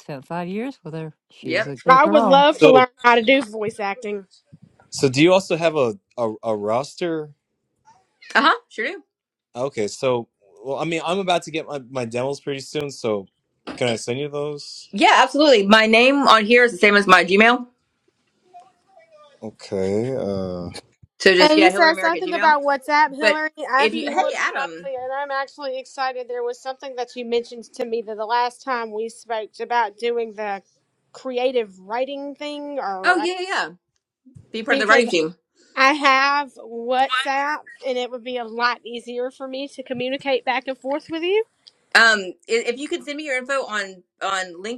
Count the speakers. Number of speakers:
four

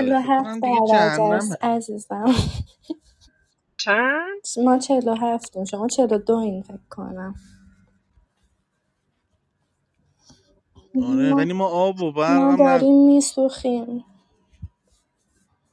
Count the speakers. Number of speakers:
three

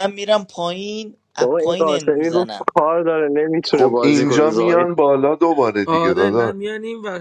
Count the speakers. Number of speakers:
four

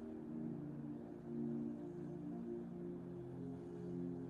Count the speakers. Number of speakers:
zero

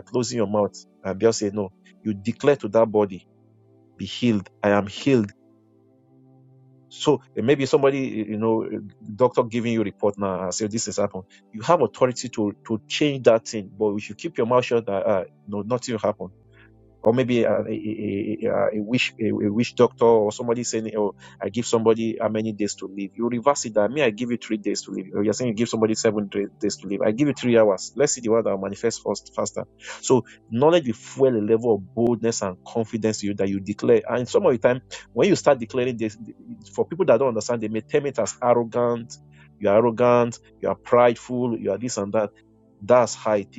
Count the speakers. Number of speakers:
one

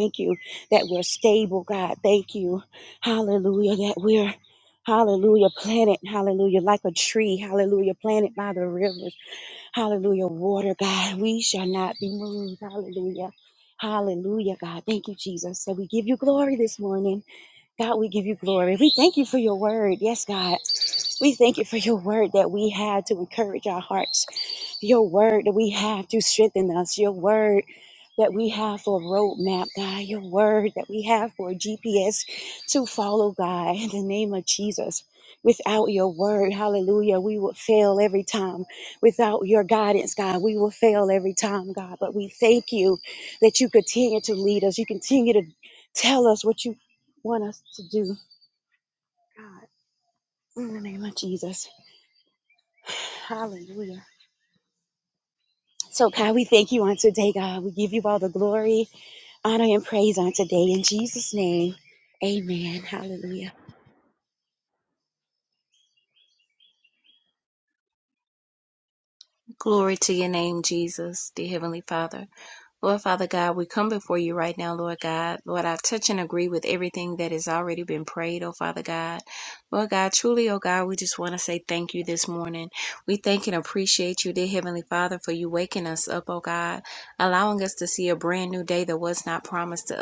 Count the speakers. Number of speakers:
two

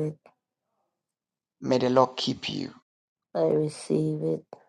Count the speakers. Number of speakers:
two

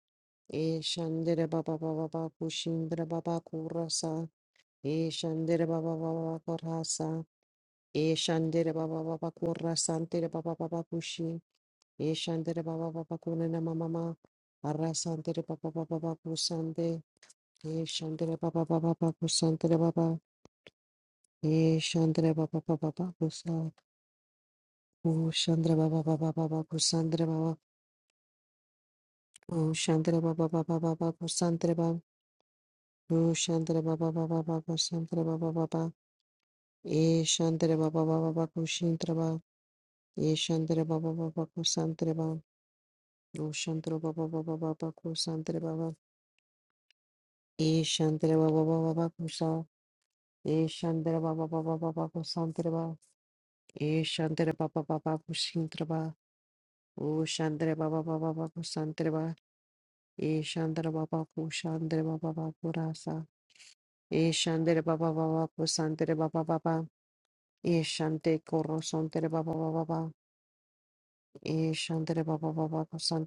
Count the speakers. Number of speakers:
one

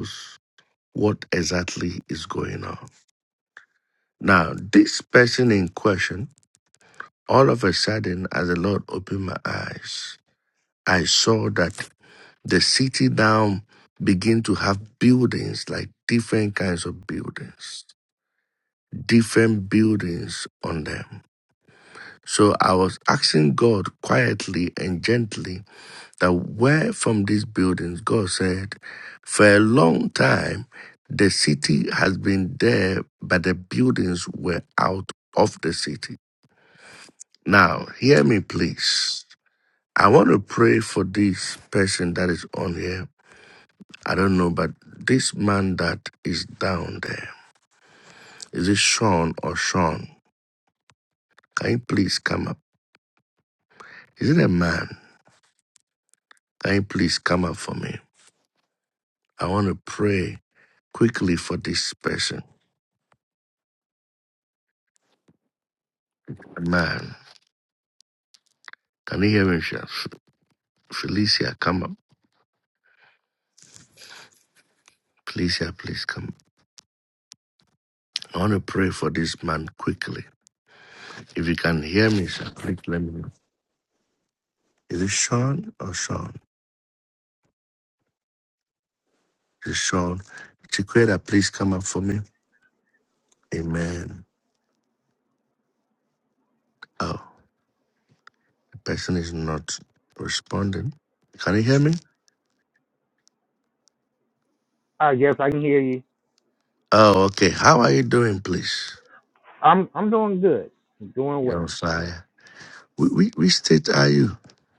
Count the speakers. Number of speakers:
two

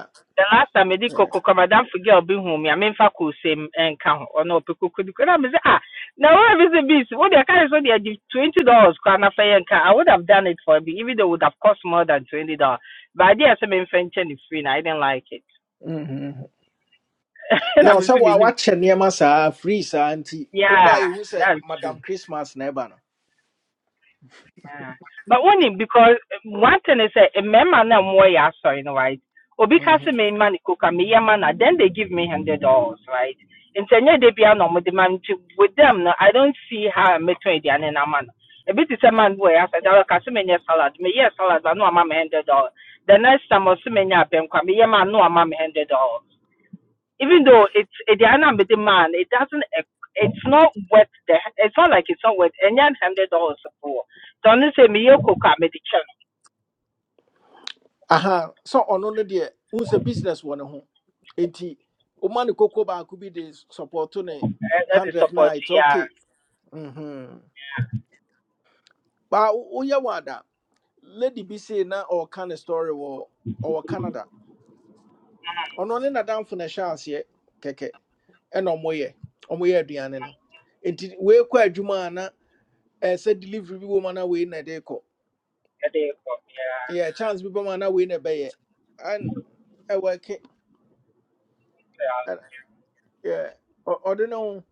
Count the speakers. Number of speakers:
two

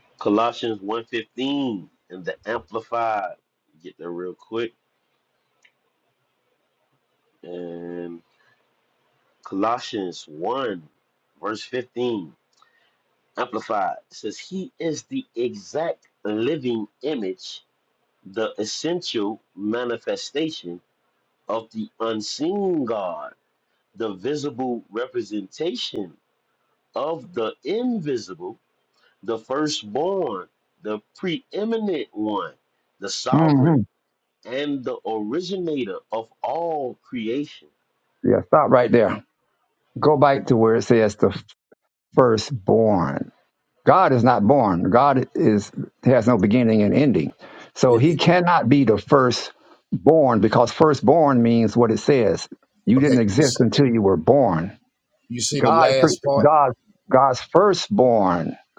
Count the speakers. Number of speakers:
three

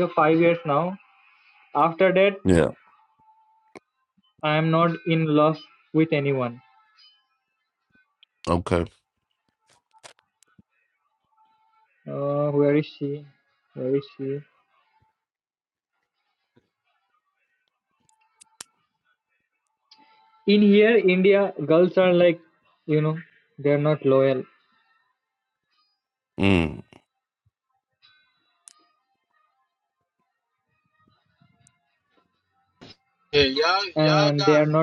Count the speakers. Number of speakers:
three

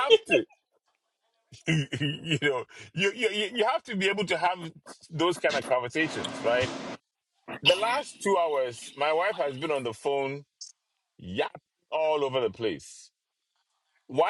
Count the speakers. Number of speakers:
one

